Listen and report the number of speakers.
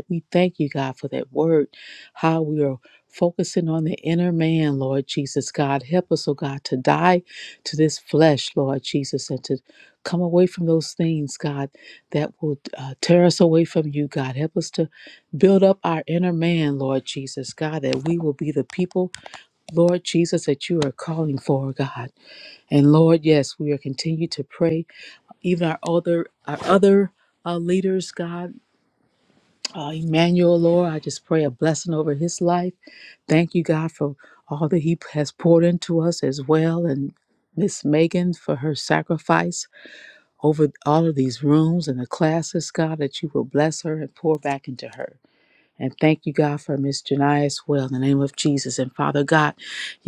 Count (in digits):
1